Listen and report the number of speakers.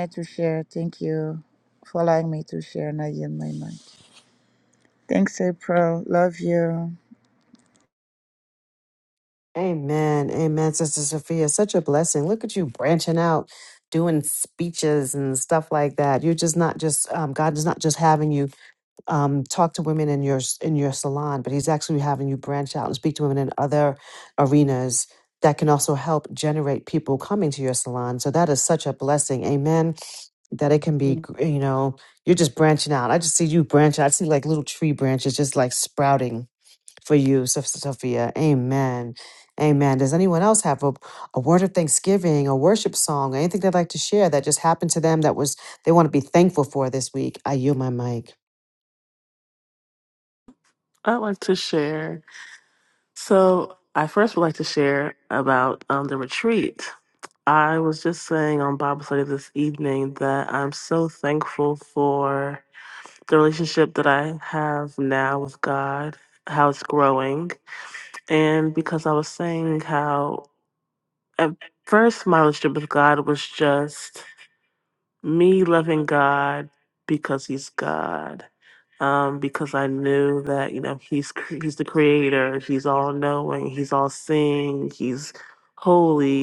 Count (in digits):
3